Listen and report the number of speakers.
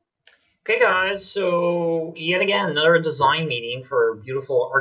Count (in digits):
1